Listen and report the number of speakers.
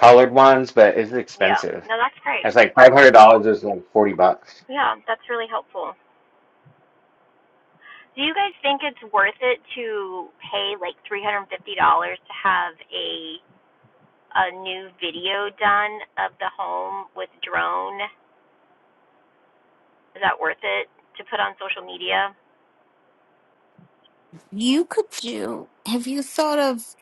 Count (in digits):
3